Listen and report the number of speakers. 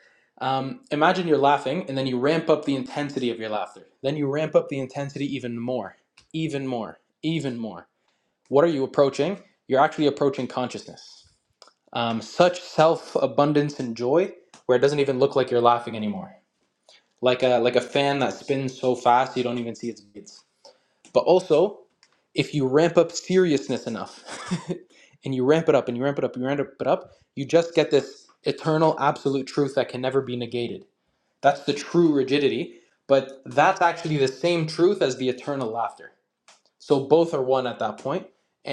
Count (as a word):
one